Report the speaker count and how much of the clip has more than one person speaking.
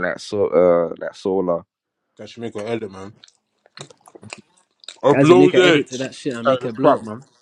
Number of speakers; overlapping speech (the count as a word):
three, about 21%